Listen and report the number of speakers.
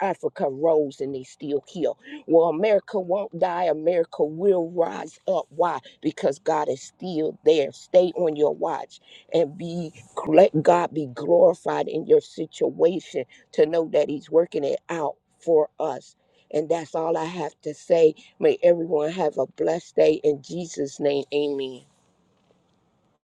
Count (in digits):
1